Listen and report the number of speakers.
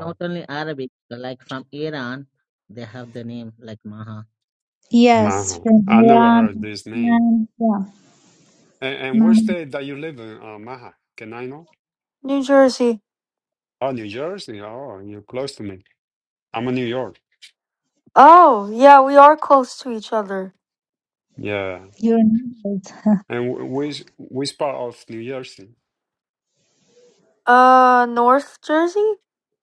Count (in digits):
4